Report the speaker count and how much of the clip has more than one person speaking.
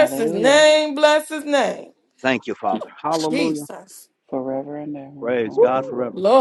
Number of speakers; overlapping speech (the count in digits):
3, about 36%